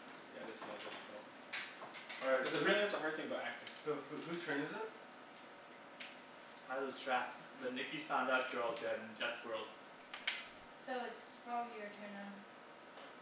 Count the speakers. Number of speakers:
4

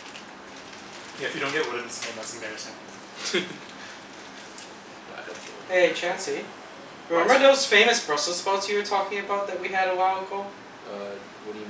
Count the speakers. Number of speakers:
3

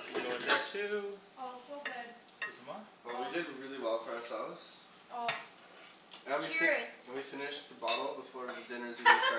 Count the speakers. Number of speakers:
3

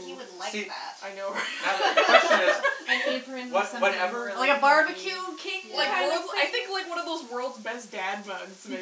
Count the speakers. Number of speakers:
4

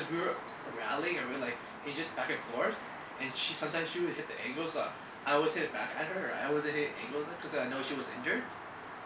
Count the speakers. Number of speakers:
1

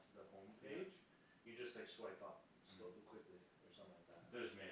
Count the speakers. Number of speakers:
2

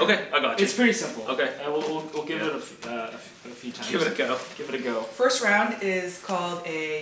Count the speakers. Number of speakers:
3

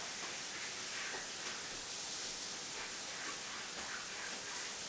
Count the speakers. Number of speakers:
0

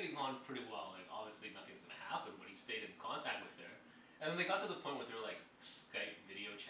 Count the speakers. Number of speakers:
1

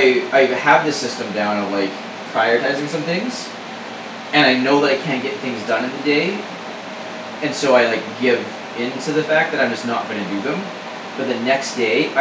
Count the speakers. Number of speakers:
1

